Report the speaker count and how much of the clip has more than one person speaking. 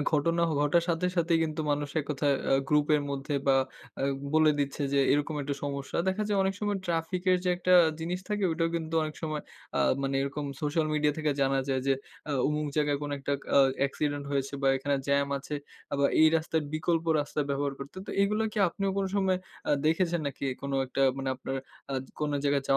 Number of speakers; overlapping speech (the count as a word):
one, no overlap